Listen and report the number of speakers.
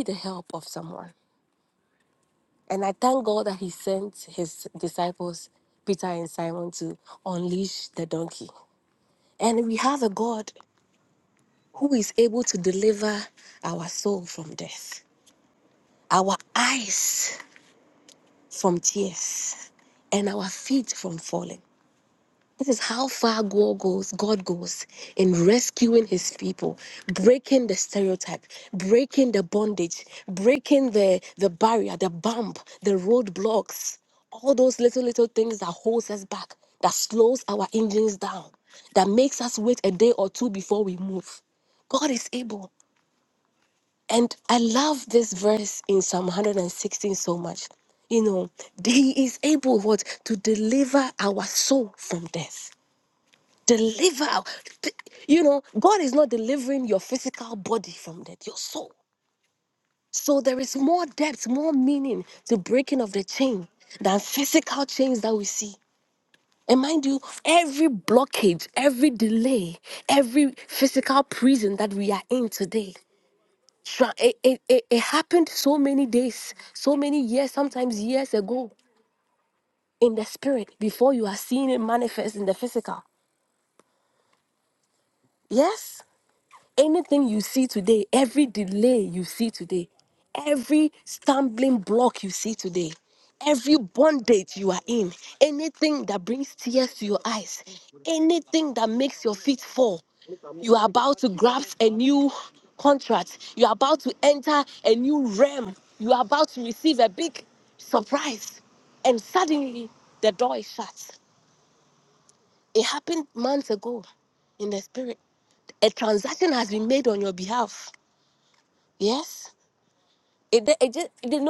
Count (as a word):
one